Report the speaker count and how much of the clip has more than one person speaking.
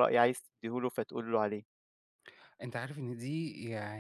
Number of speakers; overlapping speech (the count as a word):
two, no overlap